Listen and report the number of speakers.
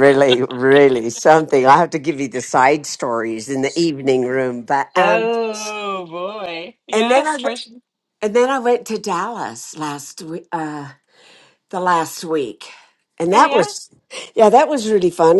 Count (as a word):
two